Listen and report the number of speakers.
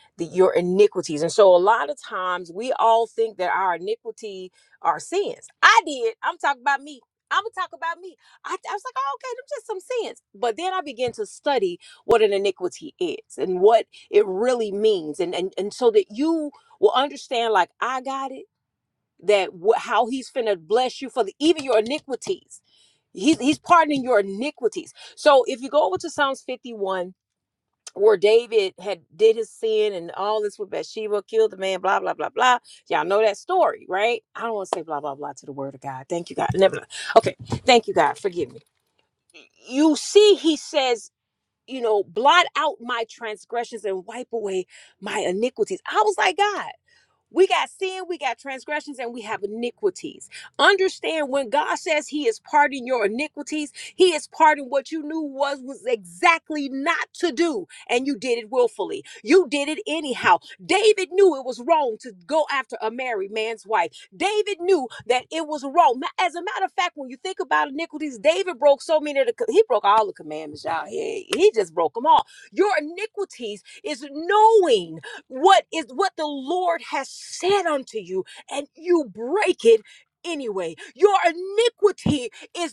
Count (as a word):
one